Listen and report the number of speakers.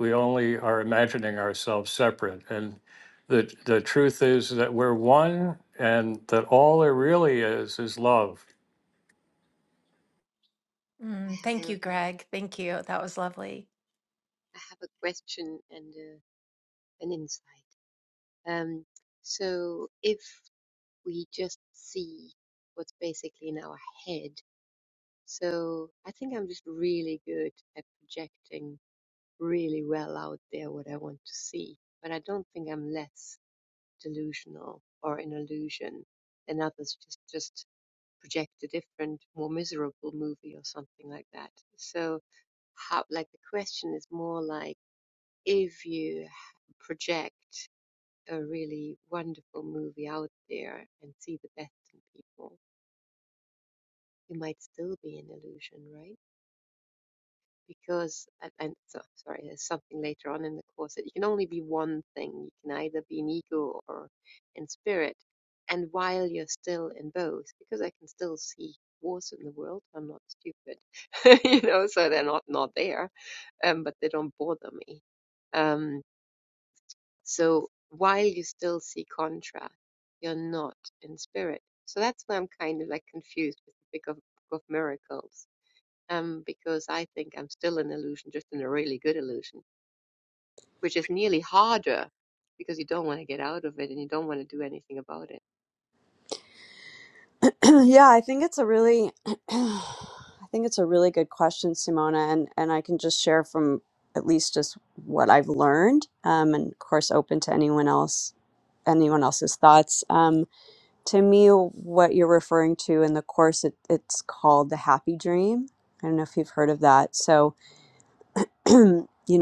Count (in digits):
4